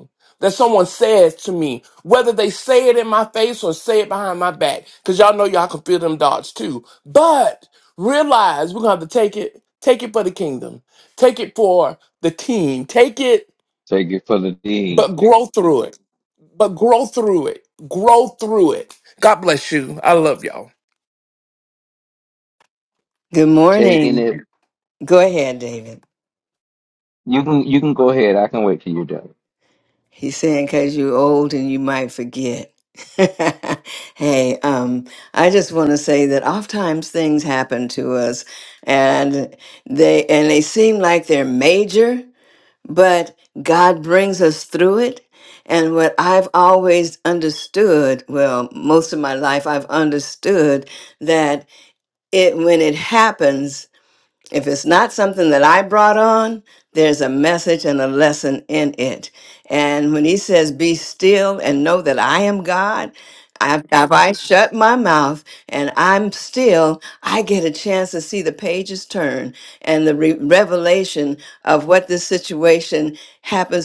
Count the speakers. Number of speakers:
3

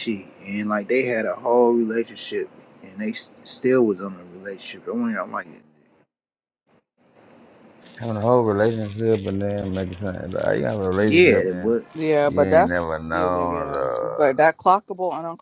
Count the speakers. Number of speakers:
3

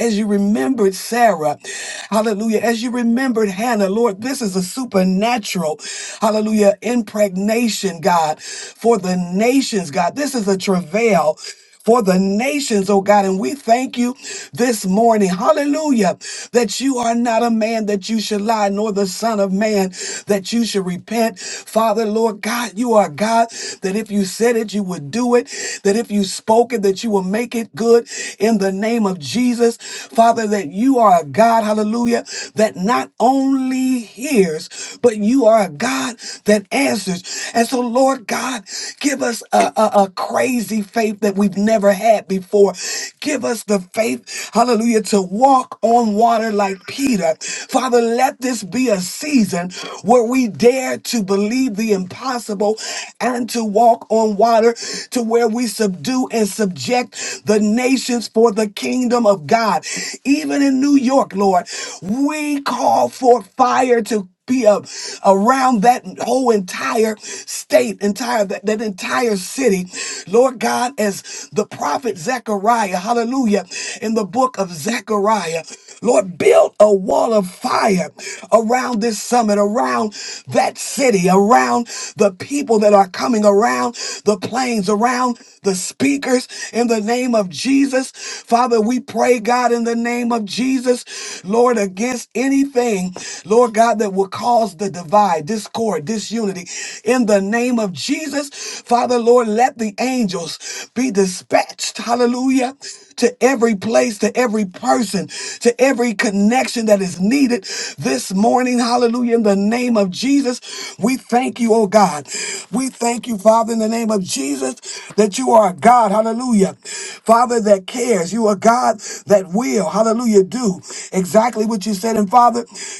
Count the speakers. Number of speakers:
1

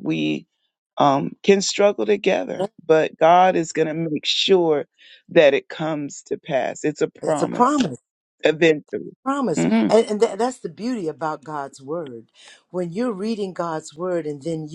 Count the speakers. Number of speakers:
2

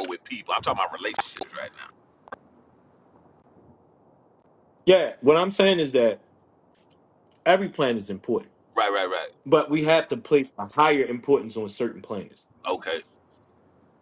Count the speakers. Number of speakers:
2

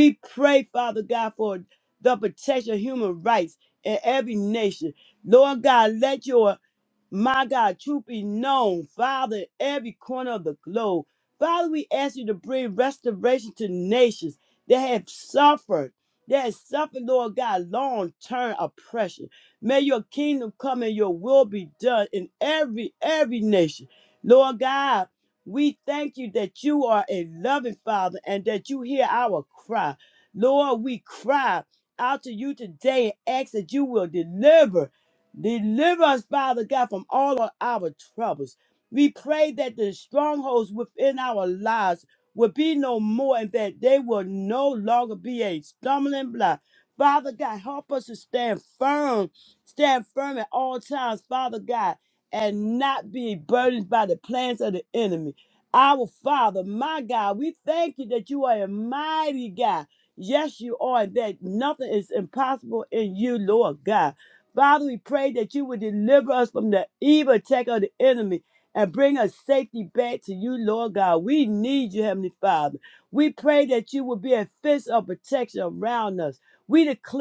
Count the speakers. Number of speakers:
1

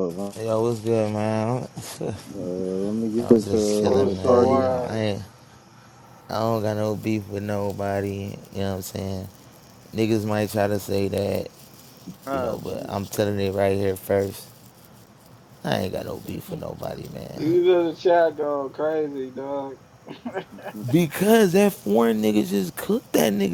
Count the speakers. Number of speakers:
3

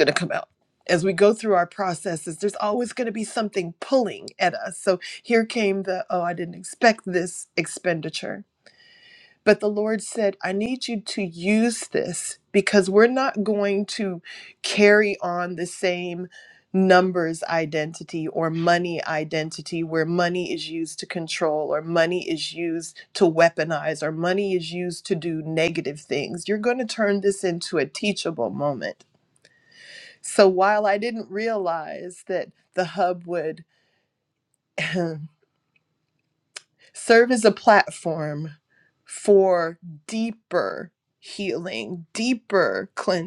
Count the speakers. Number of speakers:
1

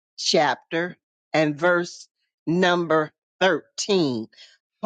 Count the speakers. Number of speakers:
1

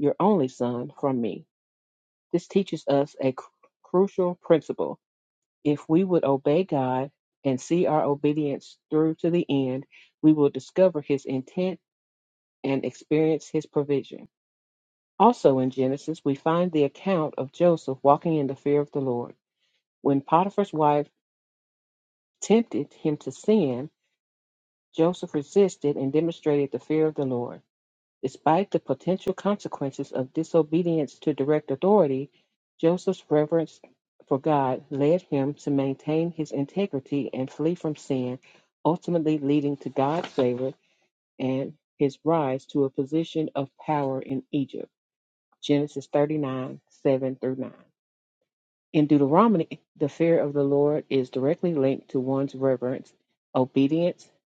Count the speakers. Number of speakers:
1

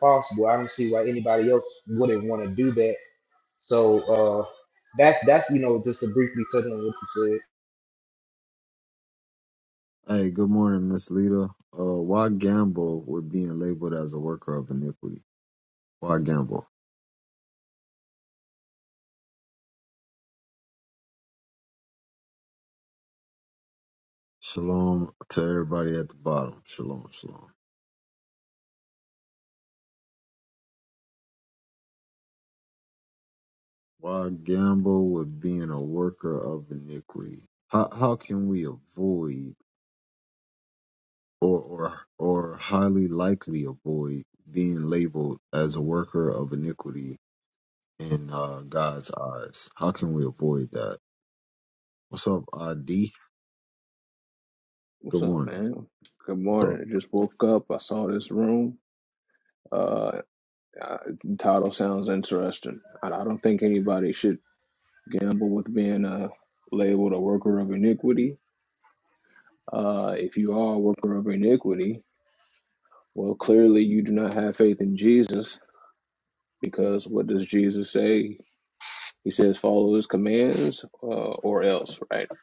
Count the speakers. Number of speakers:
3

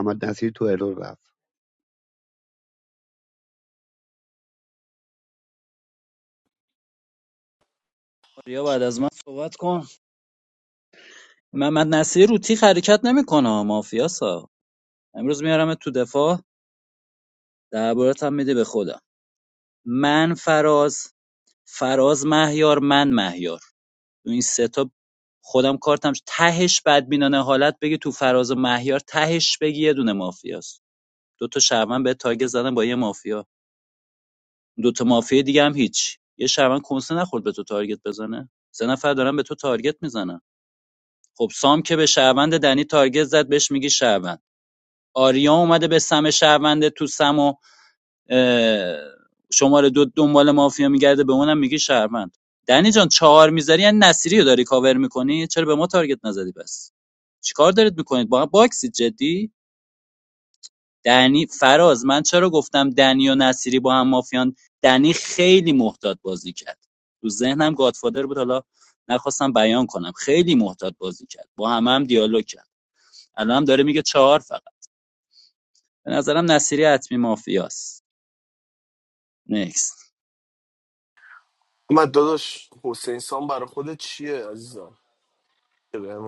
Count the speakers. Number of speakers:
3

